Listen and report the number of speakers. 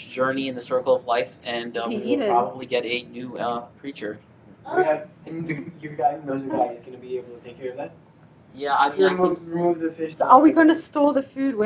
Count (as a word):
three